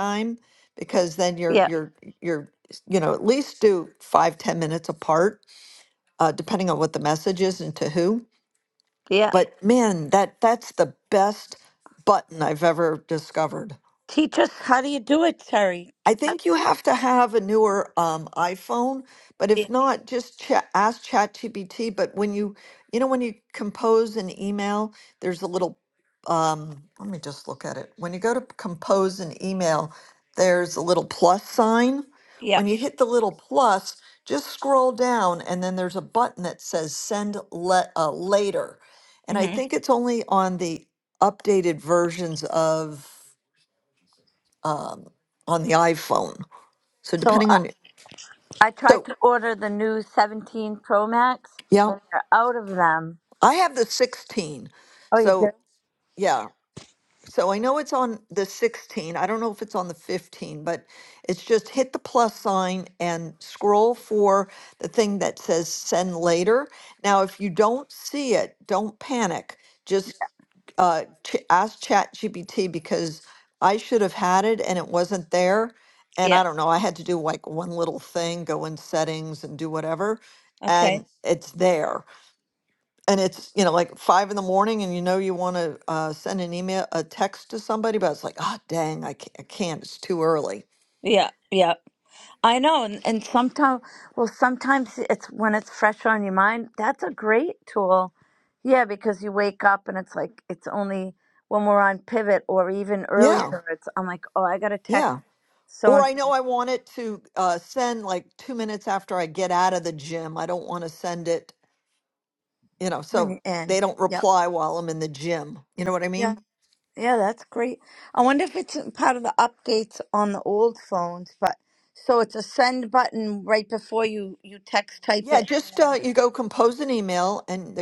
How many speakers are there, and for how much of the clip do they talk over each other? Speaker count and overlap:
two, about 3%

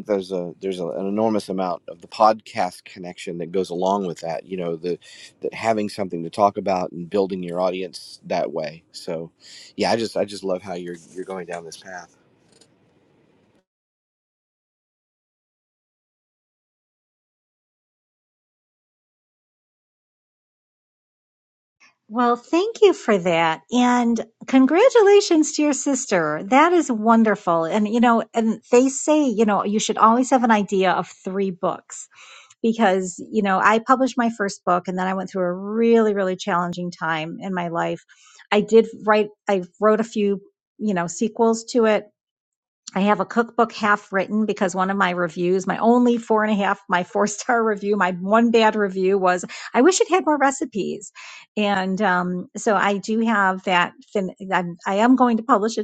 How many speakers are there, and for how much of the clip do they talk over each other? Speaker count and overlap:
two, no overlap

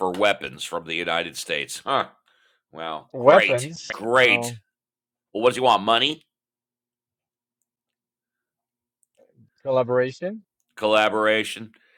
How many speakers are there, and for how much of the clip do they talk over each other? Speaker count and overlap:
two, about 11%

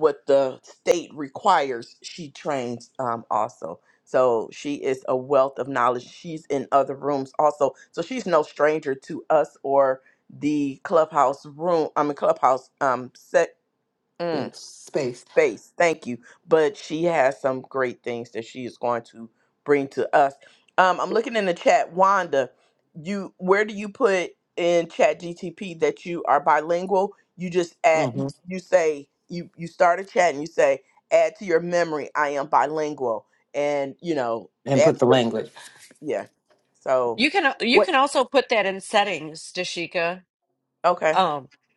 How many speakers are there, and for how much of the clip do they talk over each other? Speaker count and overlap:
three, about 3%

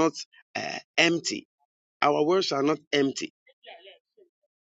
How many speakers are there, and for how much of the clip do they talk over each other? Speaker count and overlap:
one, no overlap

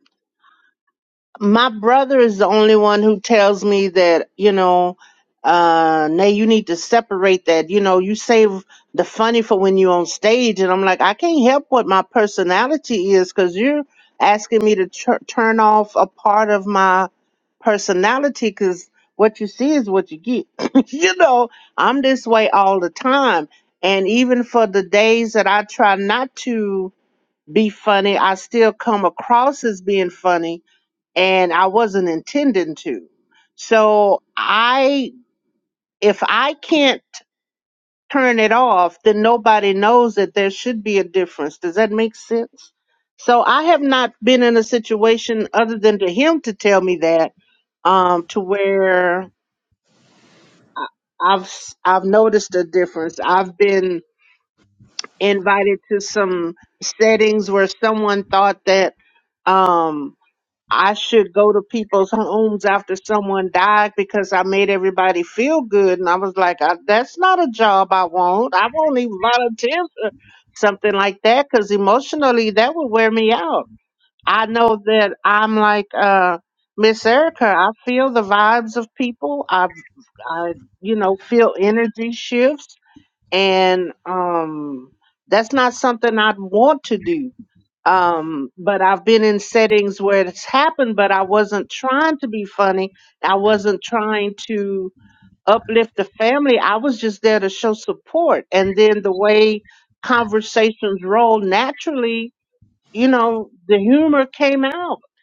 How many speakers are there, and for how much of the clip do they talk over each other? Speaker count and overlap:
one, no overlap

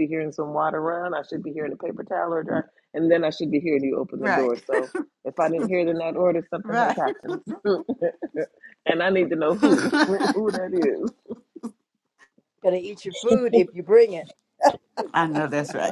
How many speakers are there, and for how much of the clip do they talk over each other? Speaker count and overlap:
three, about 5%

